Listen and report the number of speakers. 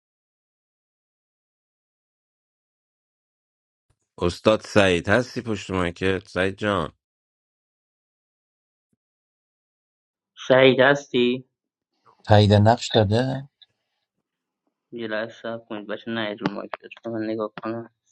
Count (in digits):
3